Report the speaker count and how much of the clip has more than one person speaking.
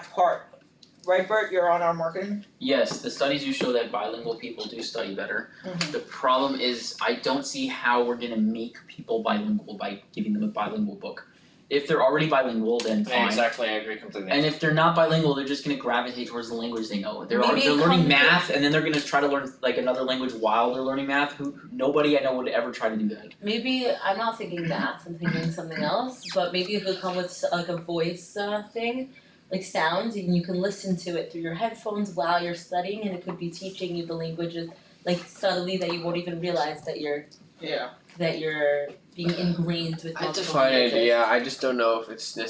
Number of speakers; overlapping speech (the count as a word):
five, about 4%